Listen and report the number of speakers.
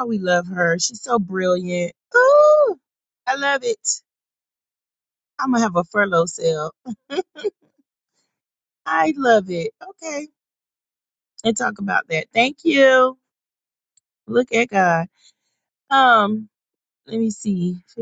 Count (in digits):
1